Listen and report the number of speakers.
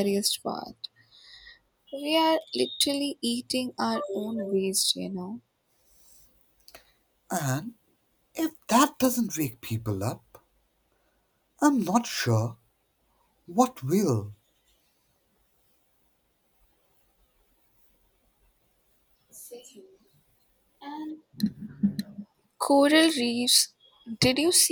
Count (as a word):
two